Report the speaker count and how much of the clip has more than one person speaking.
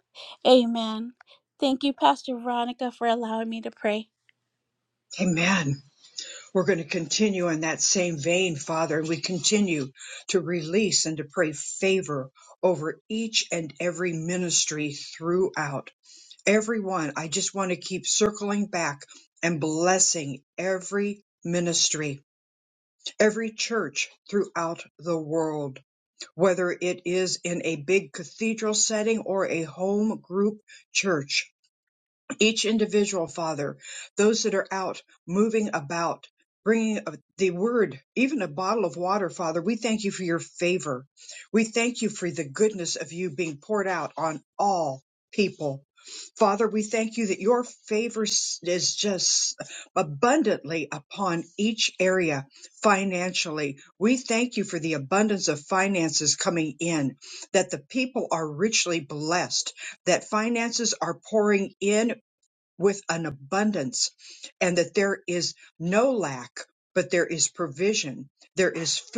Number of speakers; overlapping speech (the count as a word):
two, no overlap